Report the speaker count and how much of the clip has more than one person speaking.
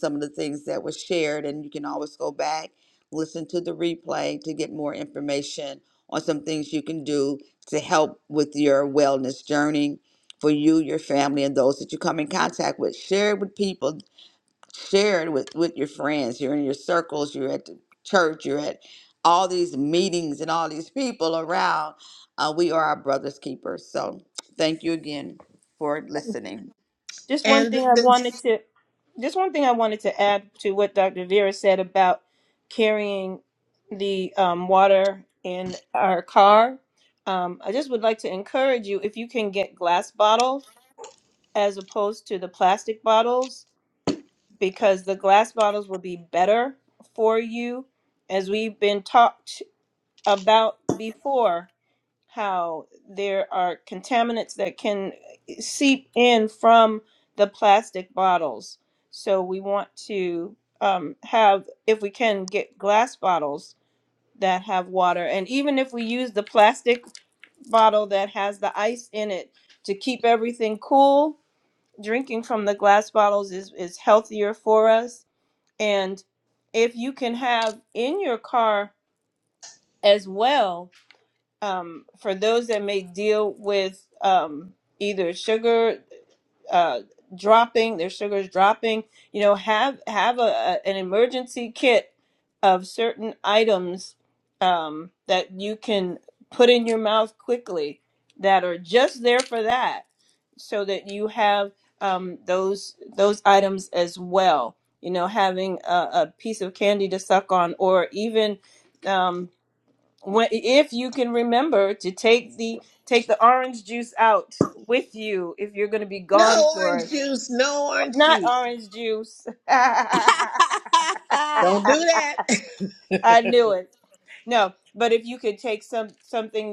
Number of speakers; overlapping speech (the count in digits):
3, about 2%